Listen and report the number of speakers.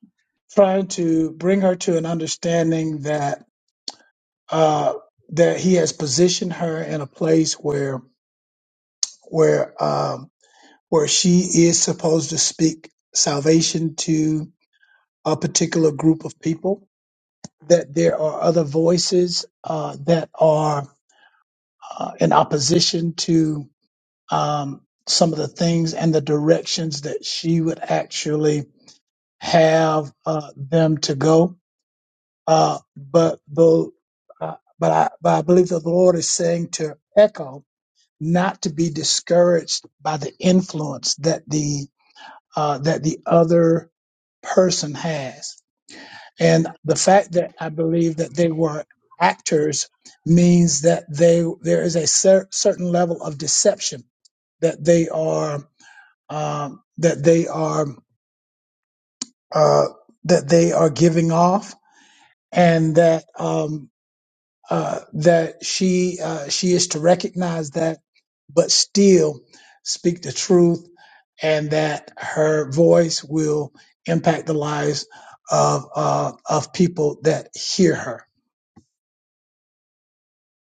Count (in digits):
1